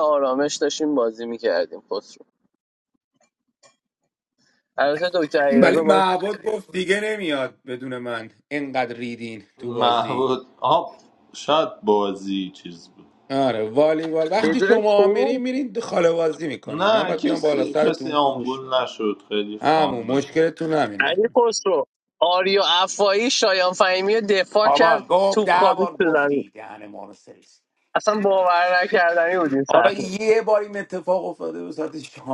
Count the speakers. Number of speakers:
3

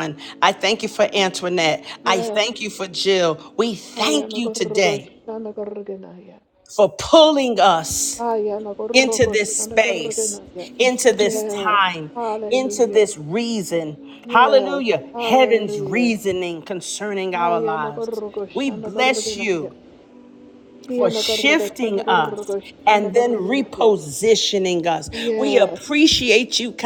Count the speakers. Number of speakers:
2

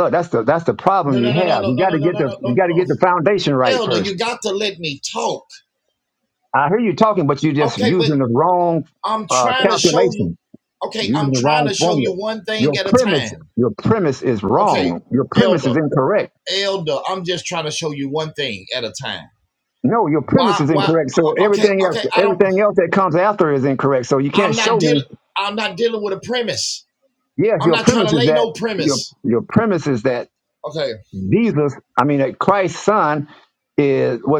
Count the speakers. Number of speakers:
2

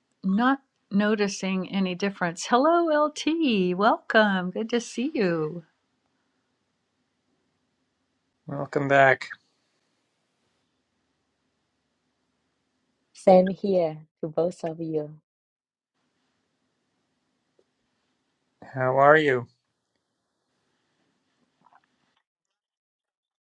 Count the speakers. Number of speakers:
3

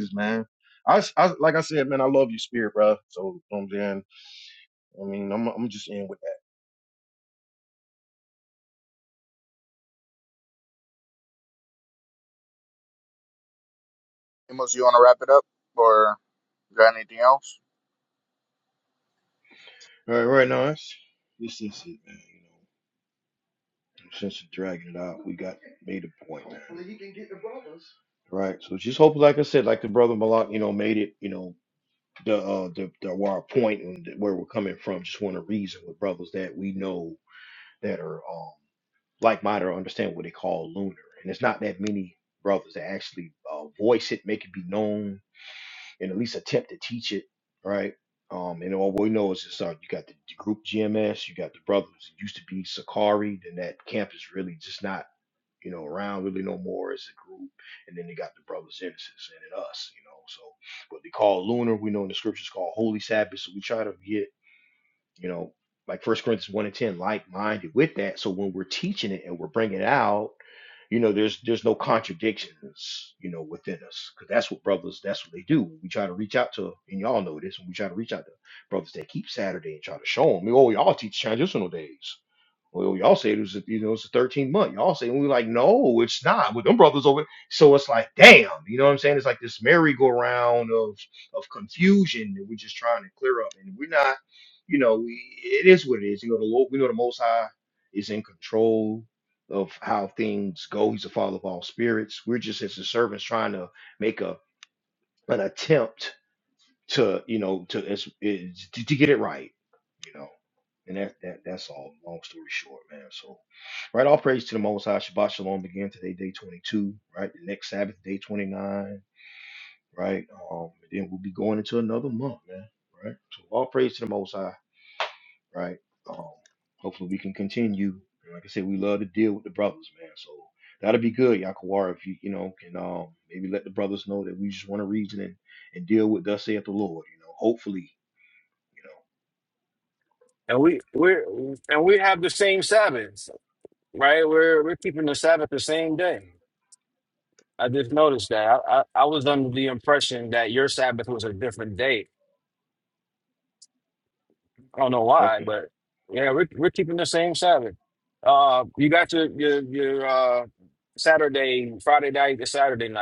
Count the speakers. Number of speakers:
4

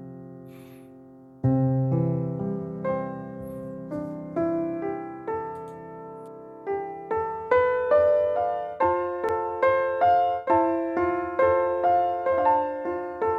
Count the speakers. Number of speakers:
0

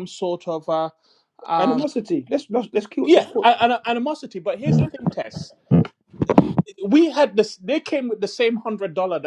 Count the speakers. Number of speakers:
2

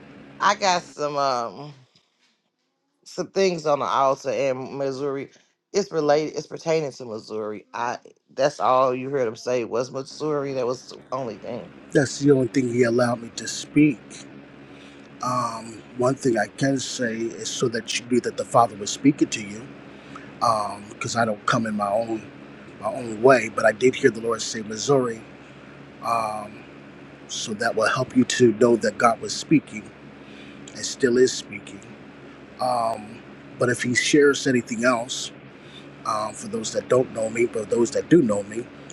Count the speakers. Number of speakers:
2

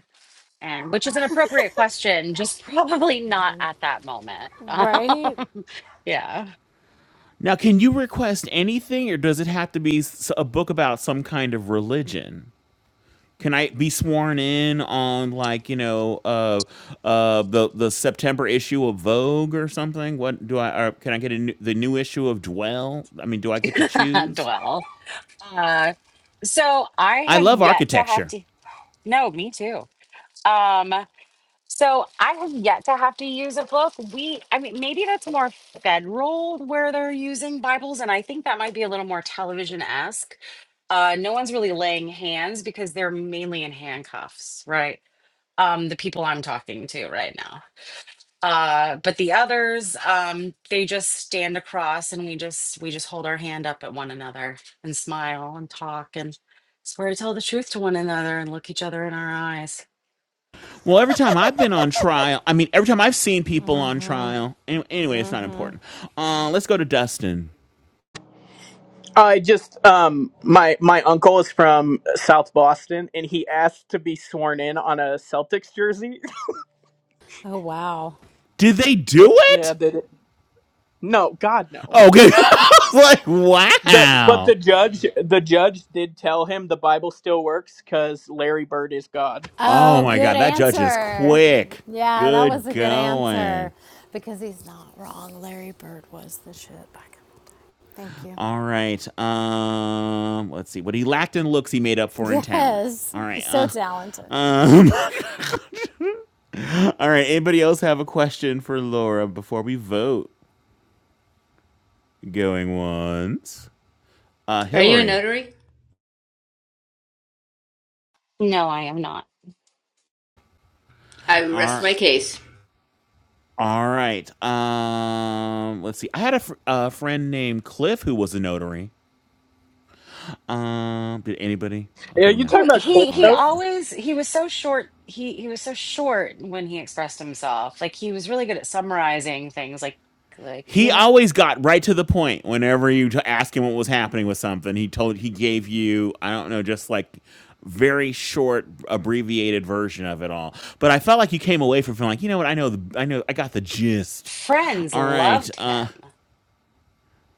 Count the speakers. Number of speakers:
5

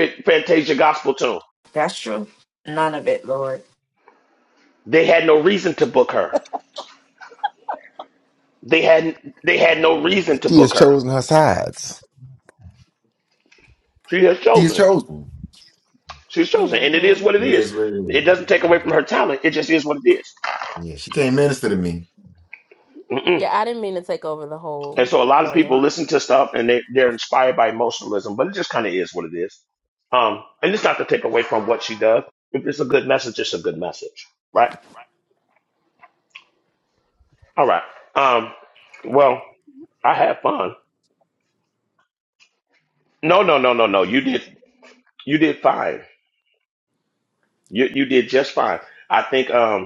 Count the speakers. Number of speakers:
4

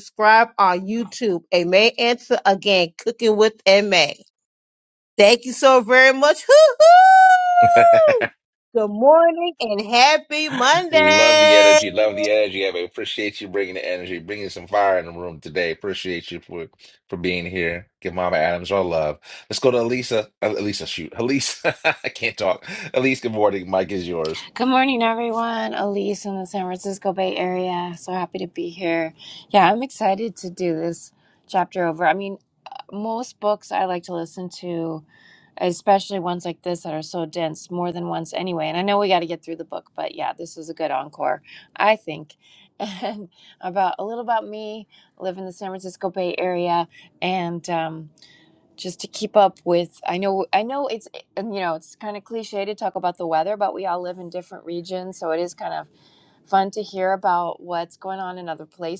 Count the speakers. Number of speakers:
3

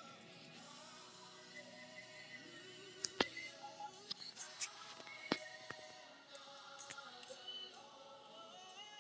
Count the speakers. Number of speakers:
0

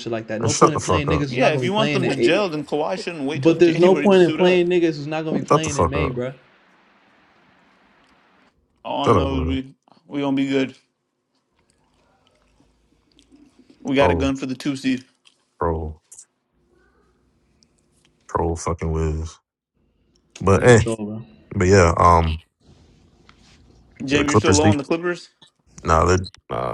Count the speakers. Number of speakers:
3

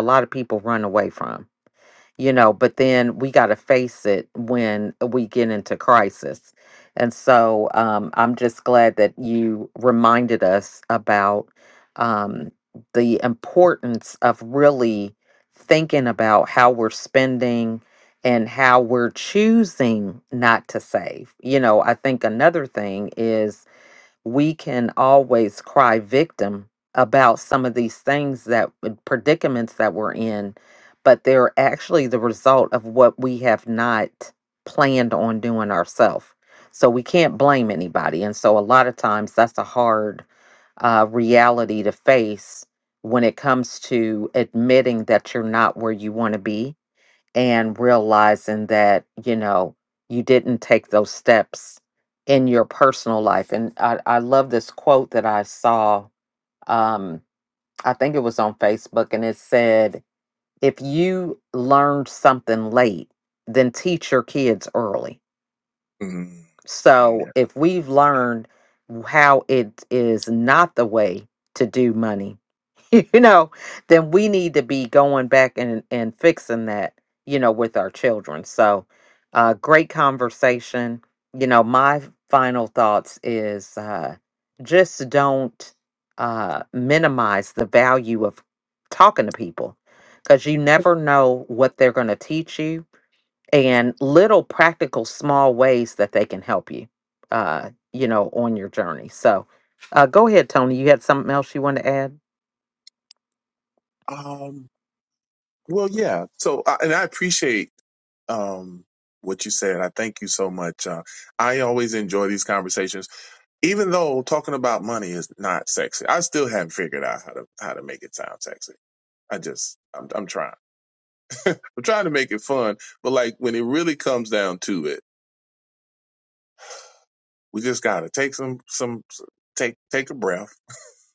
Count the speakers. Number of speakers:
2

